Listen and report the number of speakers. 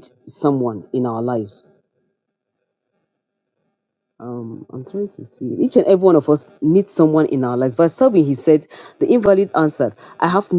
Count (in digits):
1